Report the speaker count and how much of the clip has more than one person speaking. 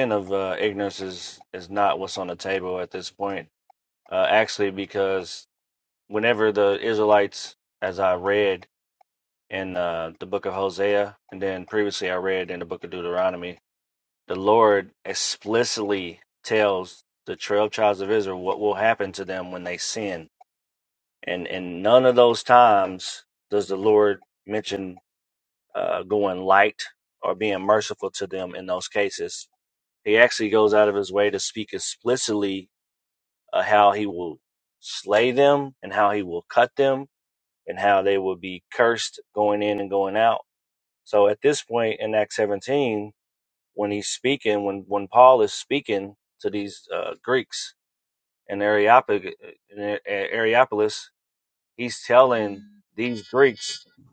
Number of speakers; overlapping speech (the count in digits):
1, no overlap